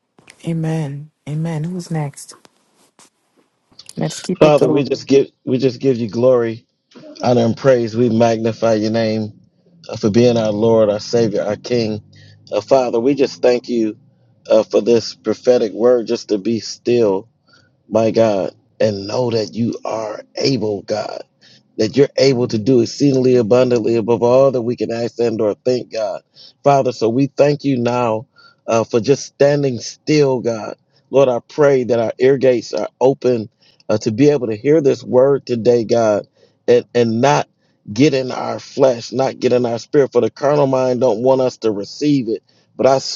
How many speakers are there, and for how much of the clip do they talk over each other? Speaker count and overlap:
2, about 1%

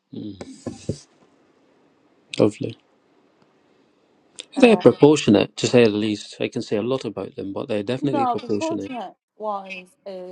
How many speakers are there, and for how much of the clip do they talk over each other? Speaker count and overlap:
2, about 12%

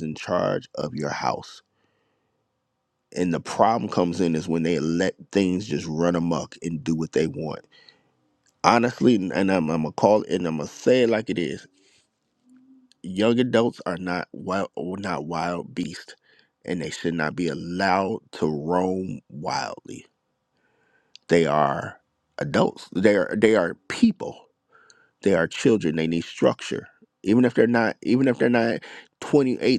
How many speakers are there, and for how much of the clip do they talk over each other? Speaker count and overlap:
1, no overlap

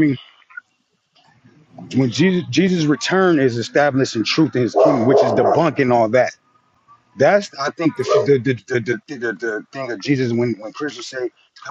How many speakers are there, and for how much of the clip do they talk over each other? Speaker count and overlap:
1, no overlap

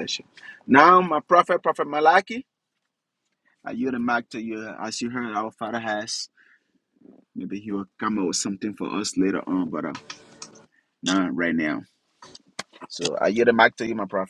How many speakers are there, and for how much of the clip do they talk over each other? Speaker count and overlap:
1, no overlap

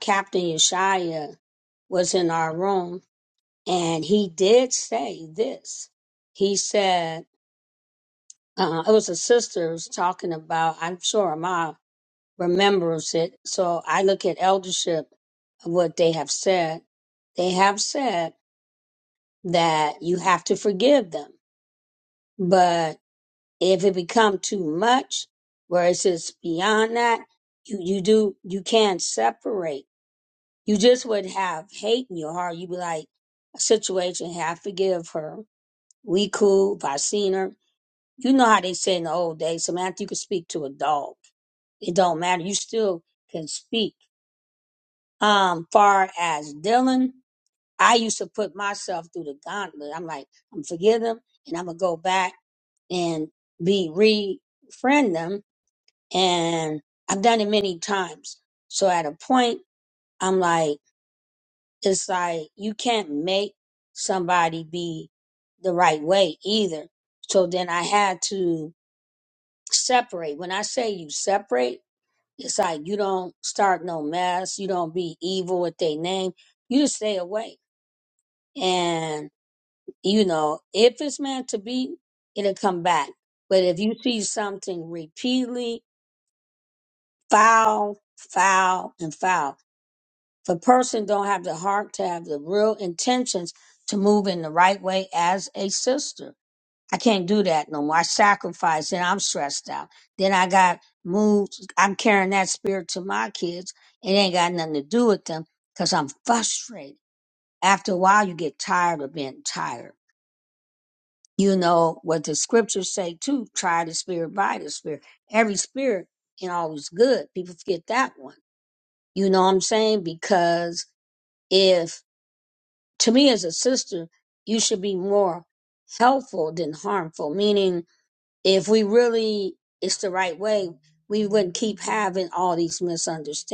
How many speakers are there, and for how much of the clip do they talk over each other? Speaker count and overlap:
1, no overlap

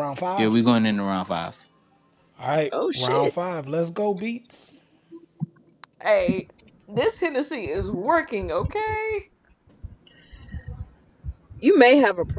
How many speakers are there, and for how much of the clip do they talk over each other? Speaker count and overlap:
4, about 6%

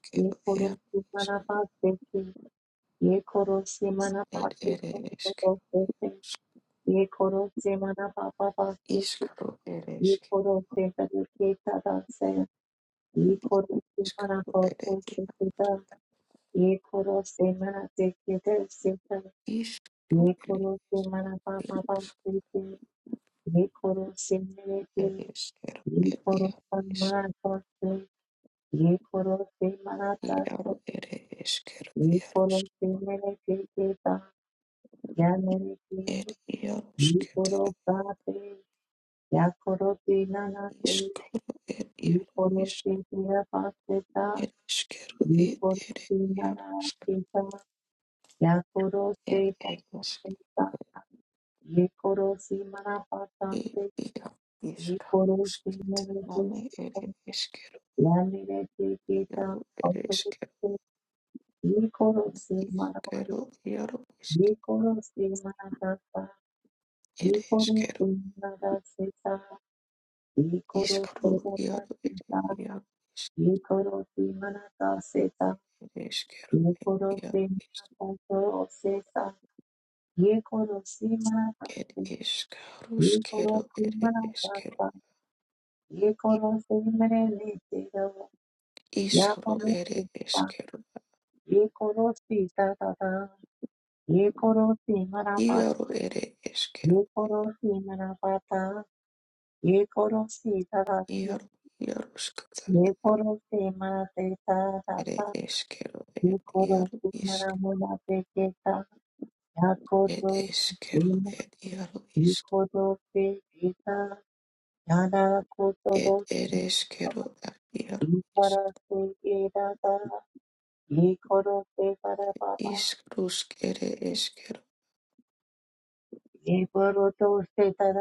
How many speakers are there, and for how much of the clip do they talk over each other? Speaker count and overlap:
2, about 20%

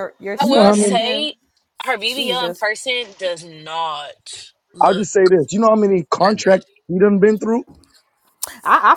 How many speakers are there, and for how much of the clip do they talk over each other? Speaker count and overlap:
3, about 21%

